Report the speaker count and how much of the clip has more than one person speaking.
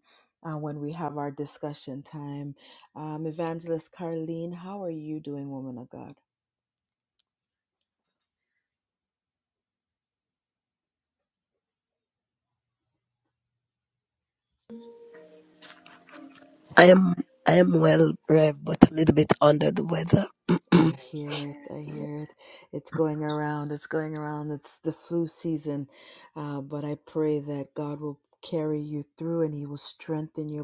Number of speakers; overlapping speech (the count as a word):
two, no overlap